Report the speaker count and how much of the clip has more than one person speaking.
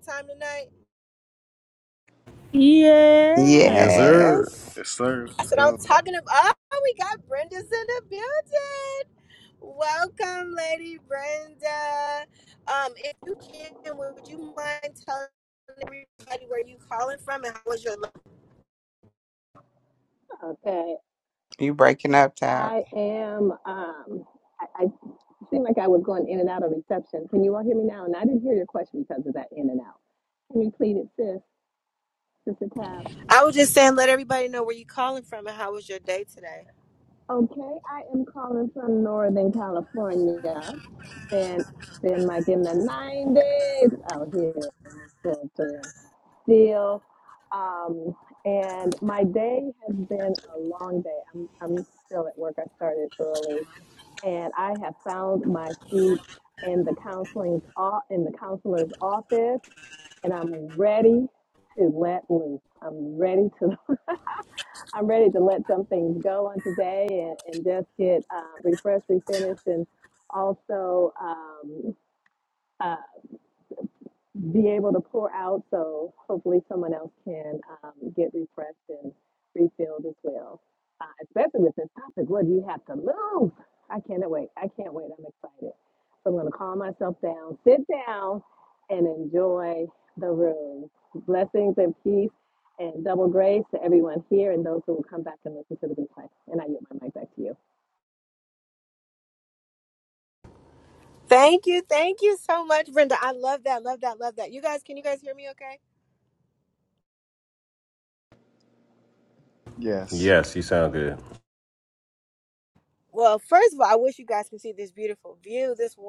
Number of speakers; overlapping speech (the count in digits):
6, about 1%